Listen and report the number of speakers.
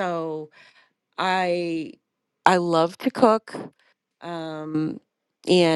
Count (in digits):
1